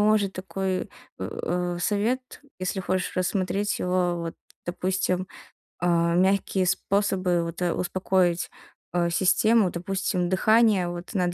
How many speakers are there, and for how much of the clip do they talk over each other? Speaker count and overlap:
1, no overlap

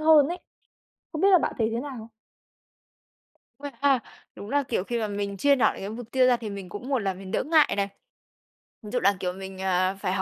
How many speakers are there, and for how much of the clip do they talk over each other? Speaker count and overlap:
2, no overlap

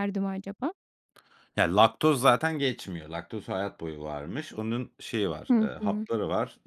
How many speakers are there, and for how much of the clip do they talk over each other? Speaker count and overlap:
2, about 8%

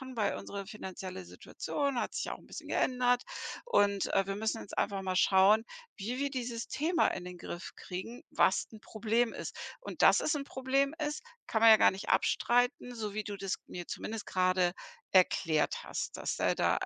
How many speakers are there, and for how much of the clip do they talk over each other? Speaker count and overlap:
1, no overlap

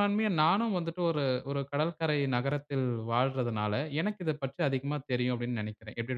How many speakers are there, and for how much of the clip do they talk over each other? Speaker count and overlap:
1, no overlap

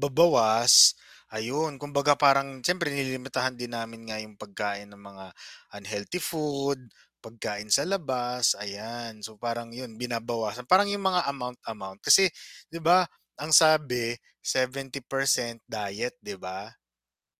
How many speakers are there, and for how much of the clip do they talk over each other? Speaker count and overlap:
1, no overlap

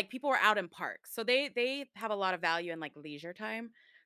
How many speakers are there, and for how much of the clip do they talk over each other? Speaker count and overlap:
1, no overlap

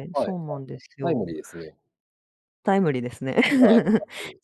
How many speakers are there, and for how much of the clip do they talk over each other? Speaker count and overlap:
2, about 15%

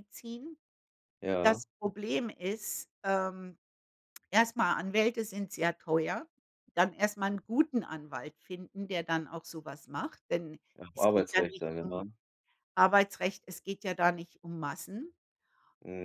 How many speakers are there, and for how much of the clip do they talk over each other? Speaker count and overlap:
2, about 5%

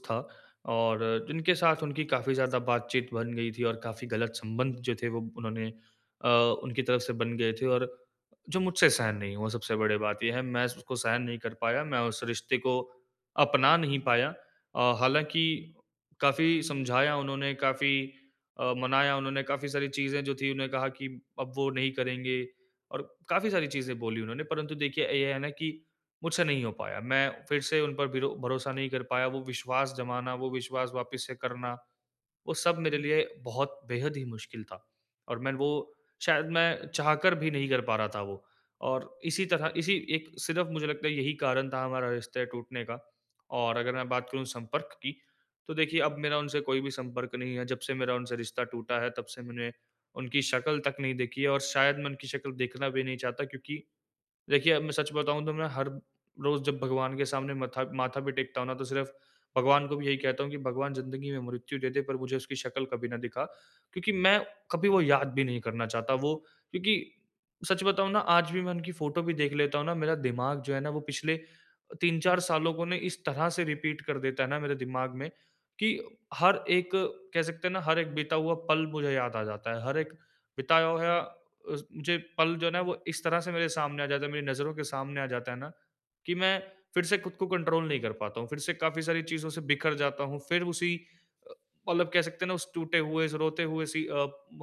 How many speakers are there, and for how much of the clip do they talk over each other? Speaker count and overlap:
1, no overlap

